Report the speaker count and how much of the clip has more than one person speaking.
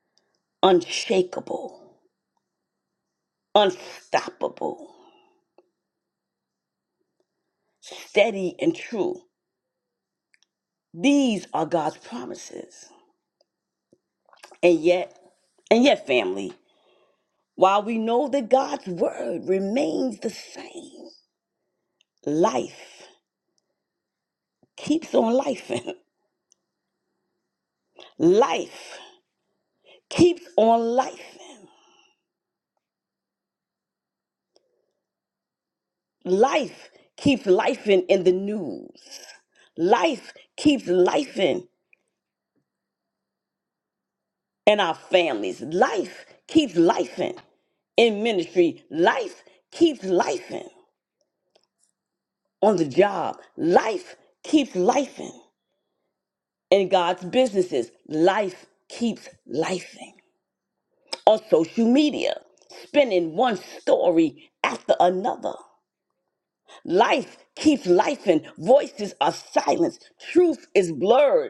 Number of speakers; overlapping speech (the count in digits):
1, no overlap